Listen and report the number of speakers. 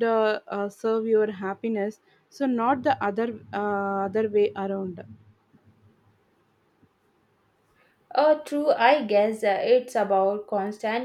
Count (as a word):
two